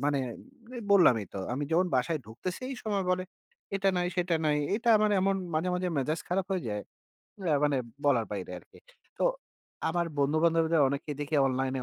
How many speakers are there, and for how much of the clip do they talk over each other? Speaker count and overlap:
one, no overlap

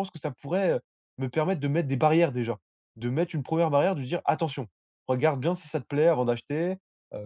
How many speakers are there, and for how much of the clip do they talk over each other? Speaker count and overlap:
one, no overlap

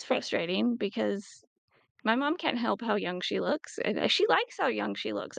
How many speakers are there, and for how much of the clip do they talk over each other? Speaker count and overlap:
one, no overlap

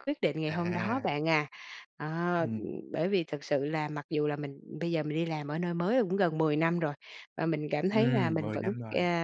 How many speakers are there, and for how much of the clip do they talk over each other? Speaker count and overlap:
two, about 19%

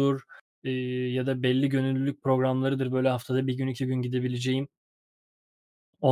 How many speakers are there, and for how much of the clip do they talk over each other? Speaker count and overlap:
one, no overlap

